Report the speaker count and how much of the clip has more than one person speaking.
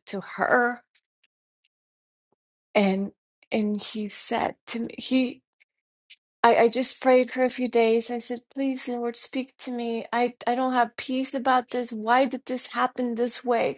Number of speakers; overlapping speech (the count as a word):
one, no overlap